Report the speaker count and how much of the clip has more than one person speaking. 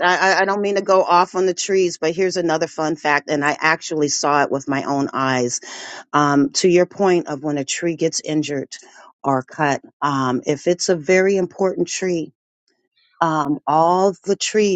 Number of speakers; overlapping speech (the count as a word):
one, no overlap